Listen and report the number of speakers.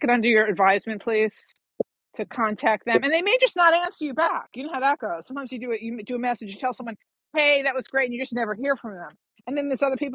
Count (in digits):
1